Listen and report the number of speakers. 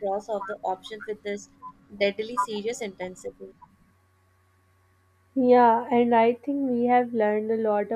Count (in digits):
2